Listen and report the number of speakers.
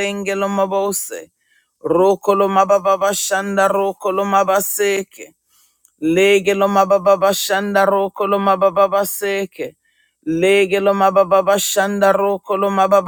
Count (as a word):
one